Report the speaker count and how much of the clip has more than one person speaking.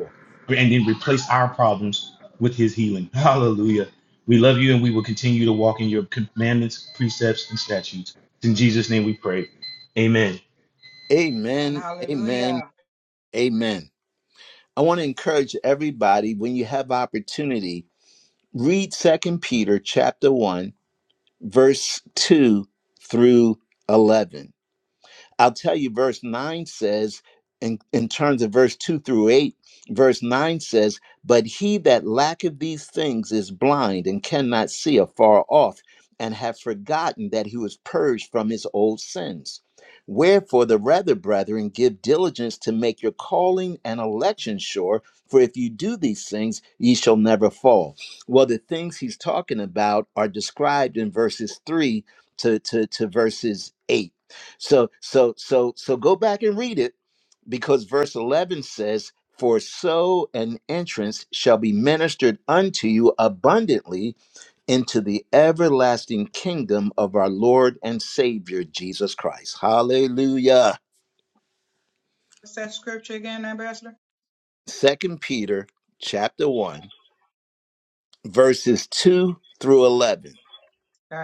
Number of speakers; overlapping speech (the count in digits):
3, about 1%